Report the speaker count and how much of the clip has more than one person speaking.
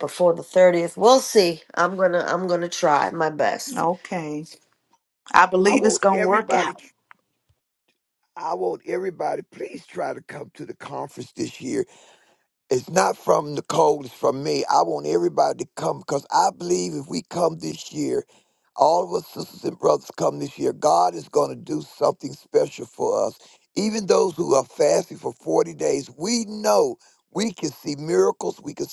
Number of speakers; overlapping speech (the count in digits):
3, about 4%